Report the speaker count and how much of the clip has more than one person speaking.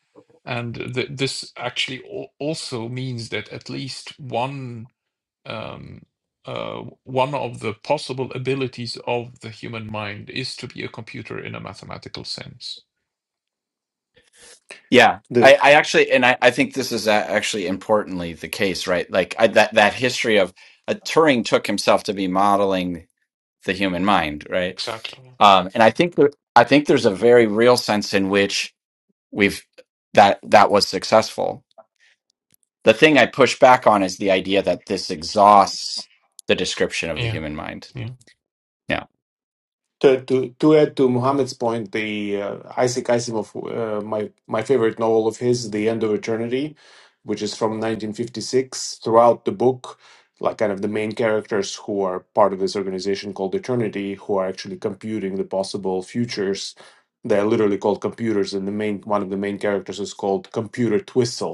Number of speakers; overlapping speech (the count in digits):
3, under 1%